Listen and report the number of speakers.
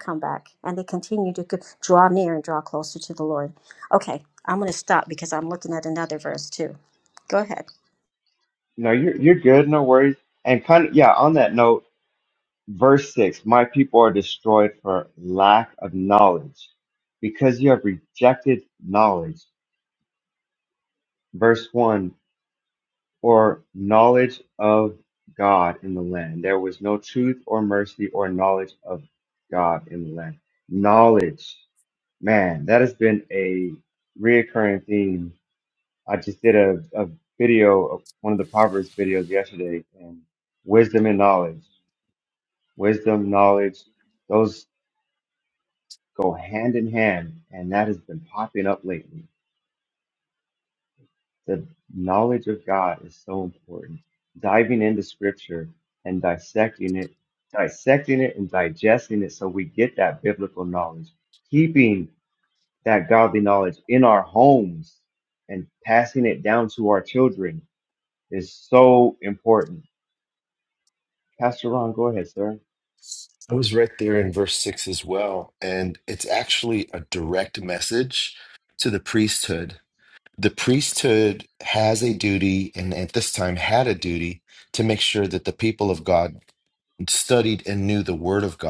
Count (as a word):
three